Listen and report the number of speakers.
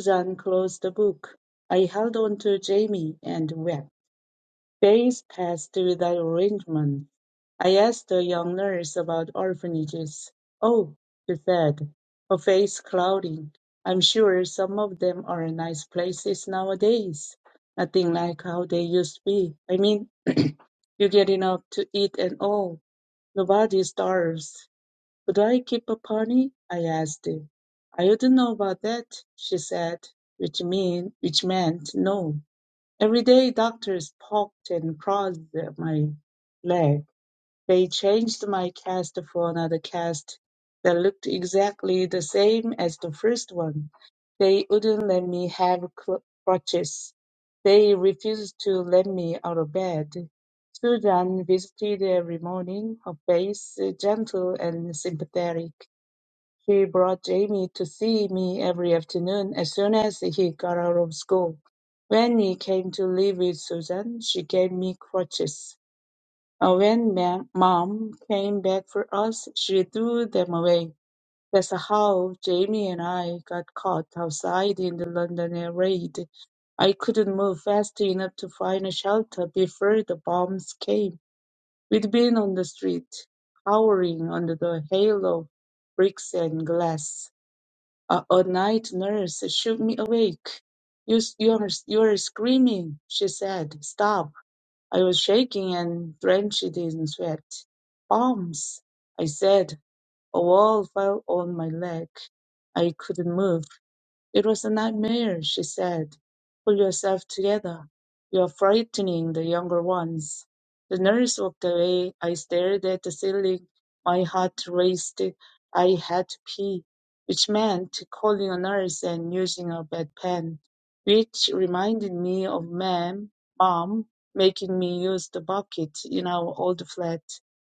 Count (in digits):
1